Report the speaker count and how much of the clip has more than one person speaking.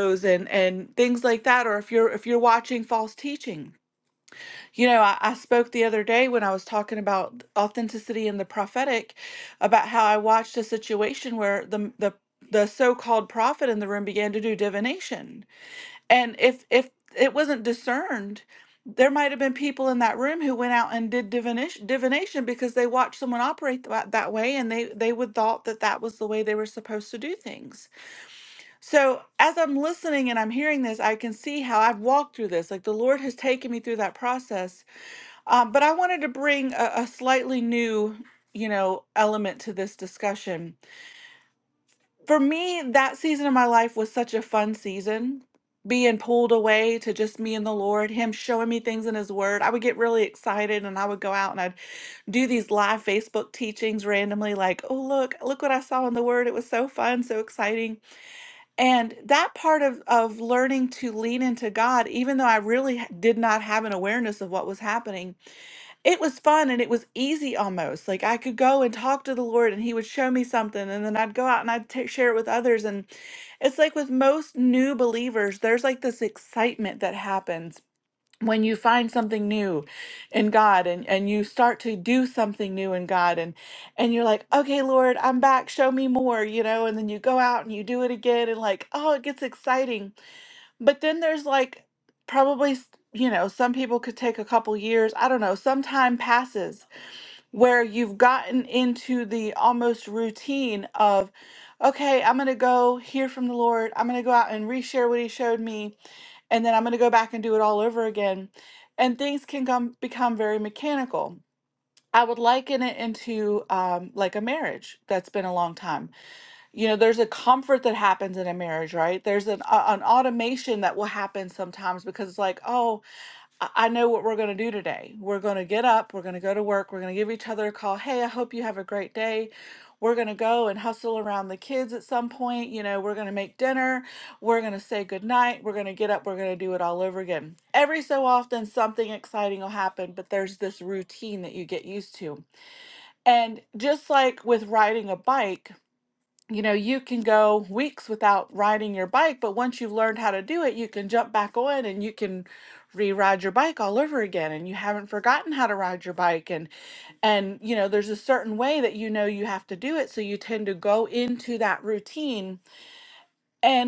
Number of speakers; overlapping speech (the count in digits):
1, no overlap